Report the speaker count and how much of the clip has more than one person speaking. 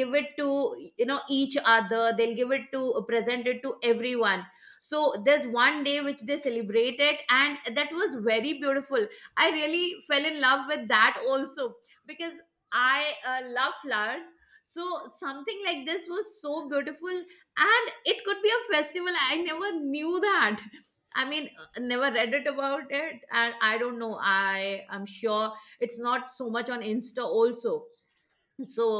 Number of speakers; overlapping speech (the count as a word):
one, no overlap